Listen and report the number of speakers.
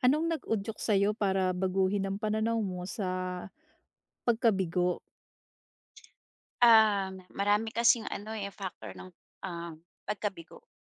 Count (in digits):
2